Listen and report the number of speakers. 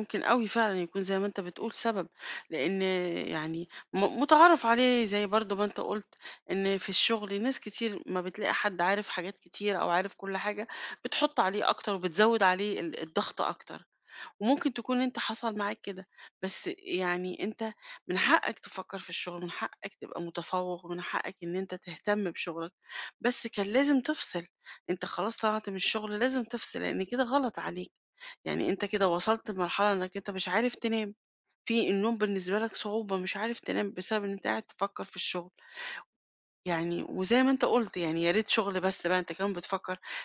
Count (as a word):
one